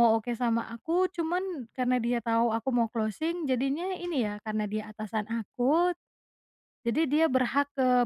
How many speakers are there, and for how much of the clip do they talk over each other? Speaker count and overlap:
1, no overlap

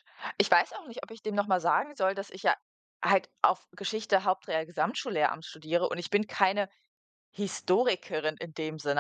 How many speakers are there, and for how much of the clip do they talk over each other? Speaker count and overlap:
1, no overlap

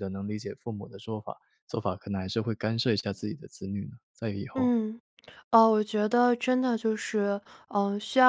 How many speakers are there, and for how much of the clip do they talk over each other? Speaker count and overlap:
2, about 1%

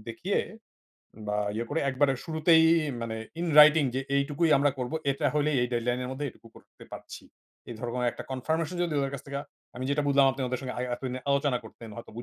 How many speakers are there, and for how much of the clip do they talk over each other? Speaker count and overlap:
1, no overlap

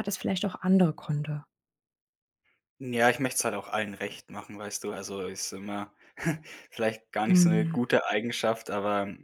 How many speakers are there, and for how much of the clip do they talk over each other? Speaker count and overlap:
2, about 5%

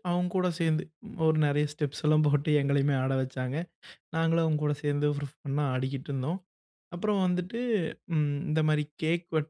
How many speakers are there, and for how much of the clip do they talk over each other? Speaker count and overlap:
1, no overlap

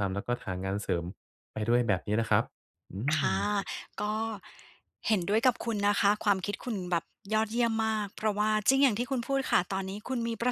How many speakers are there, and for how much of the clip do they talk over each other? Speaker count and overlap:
2, about 3%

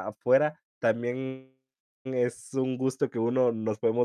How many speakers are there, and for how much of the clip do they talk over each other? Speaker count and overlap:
1, no overlap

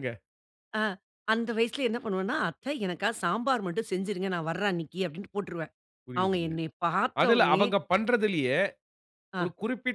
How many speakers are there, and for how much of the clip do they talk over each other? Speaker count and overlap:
2, about 10%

